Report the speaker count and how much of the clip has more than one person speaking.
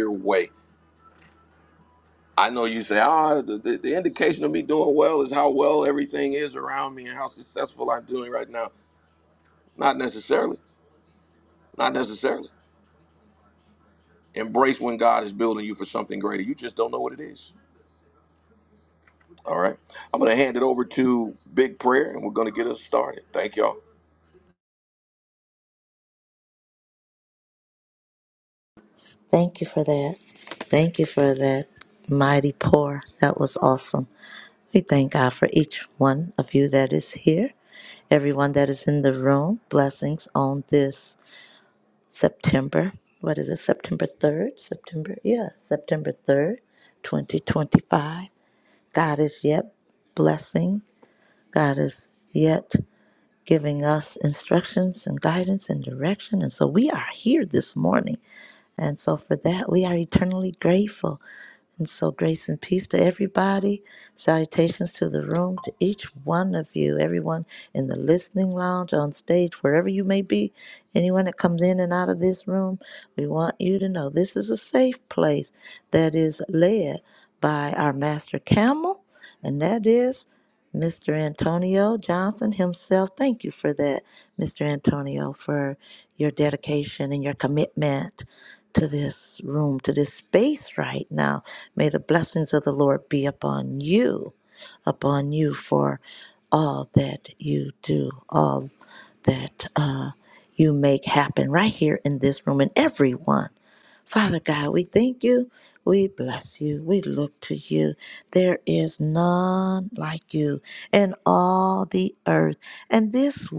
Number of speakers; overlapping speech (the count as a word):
two, no overlap